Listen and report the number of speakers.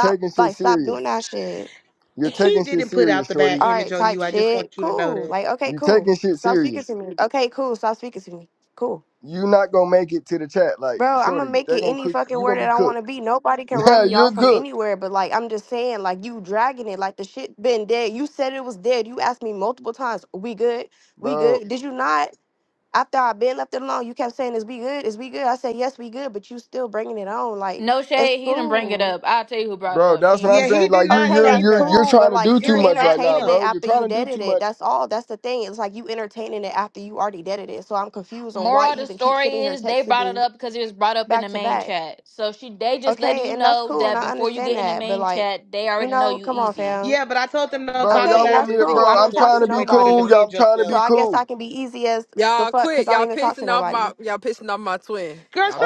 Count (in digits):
5